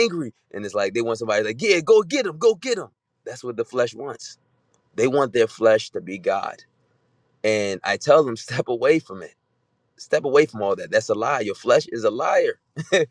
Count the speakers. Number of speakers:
1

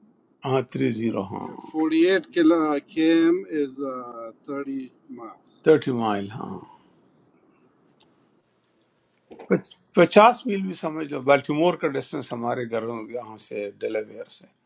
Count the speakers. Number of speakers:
2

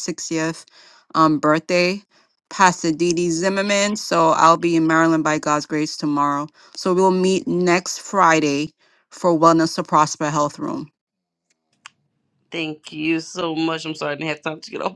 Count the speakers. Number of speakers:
2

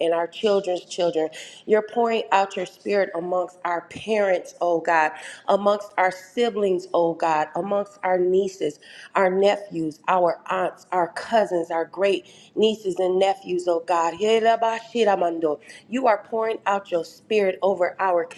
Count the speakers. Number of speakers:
1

